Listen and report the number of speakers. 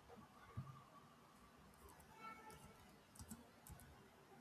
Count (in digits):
0